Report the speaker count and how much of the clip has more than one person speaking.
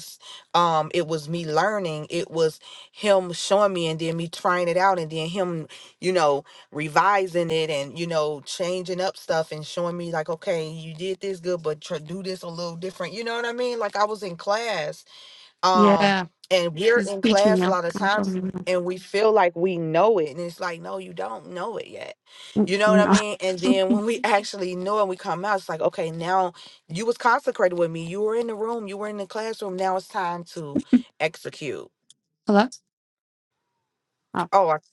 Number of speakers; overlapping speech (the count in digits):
2, about 6%